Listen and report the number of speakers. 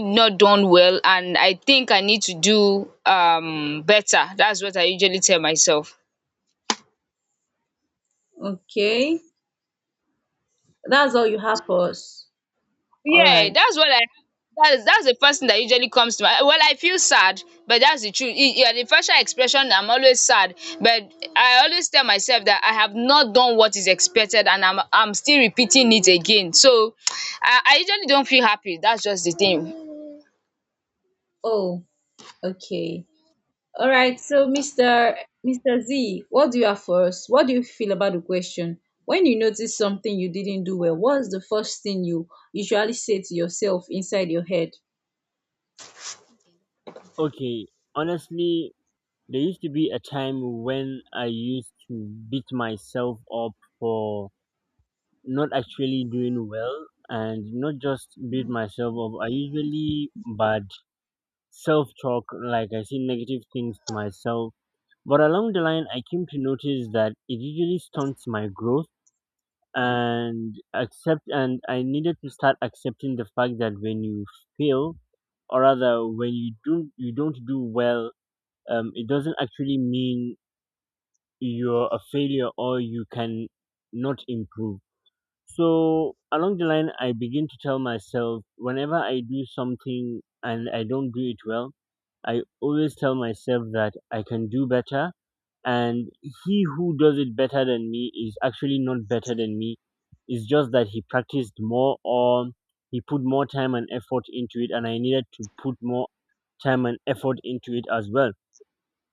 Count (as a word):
three